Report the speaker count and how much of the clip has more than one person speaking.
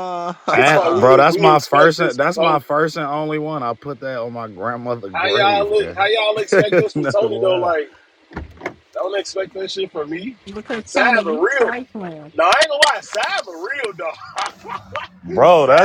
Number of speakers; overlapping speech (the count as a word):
four, about 29%